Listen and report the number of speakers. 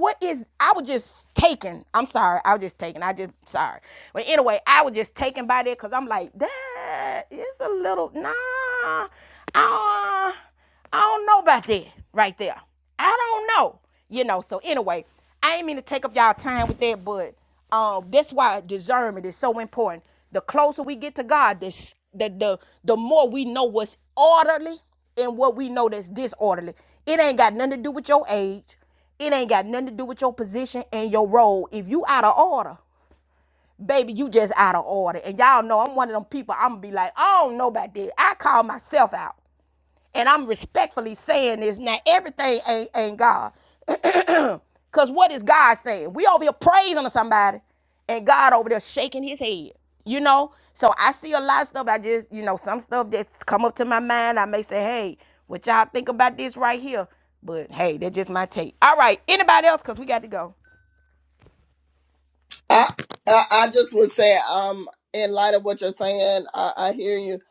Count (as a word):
two